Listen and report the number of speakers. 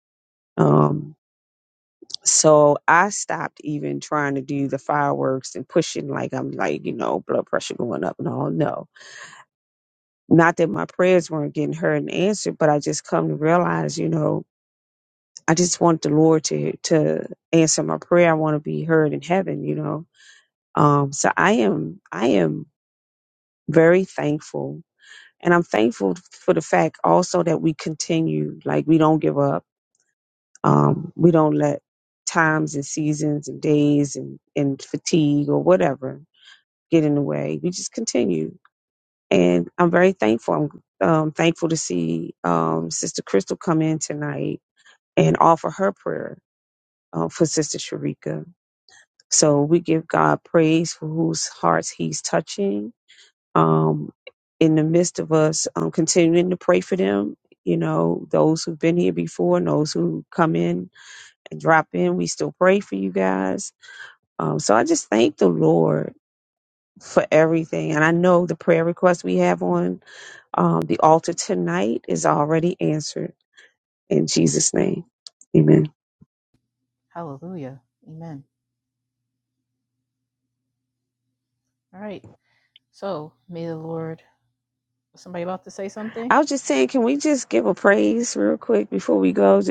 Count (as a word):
two